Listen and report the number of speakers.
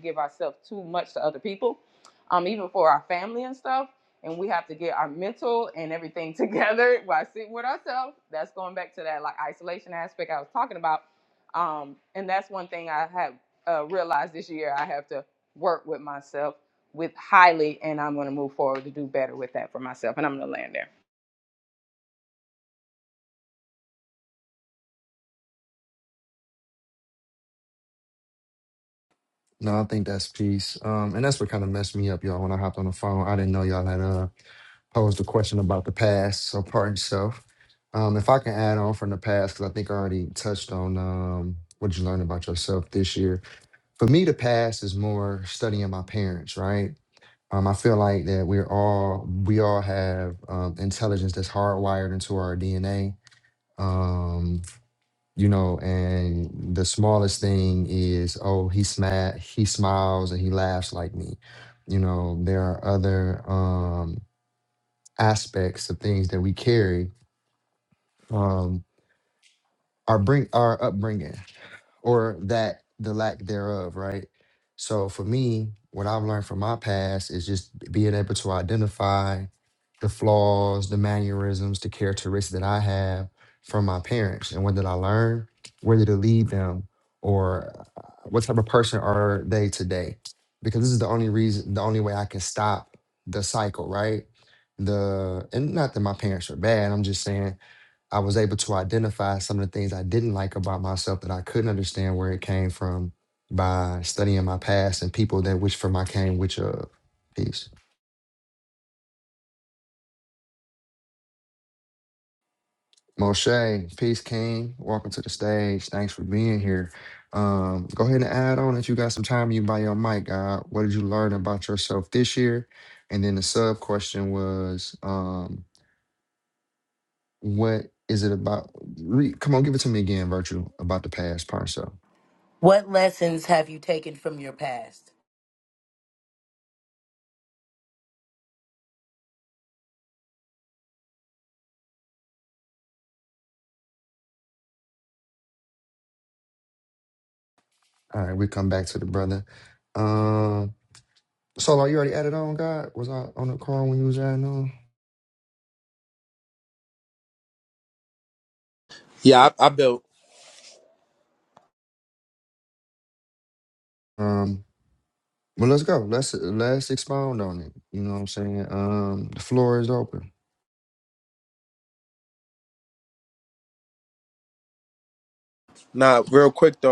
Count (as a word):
four